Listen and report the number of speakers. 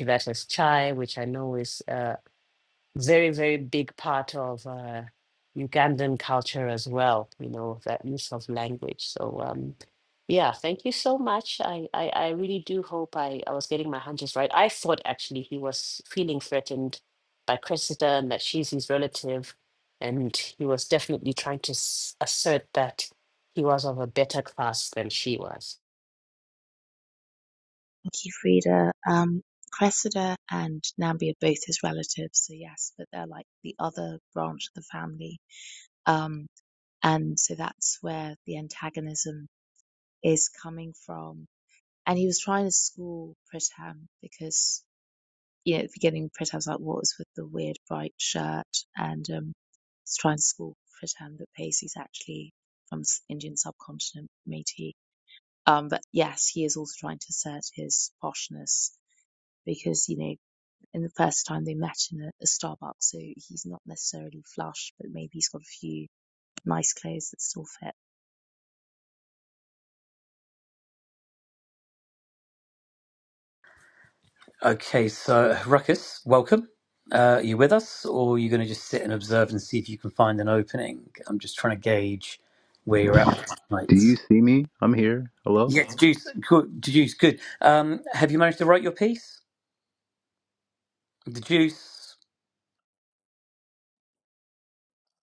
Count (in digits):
4